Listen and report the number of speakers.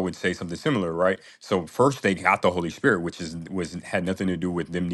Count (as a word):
one